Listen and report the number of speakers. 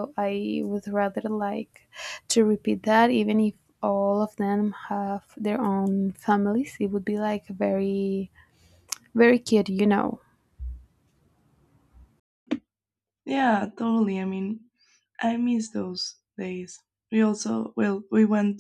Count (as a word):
two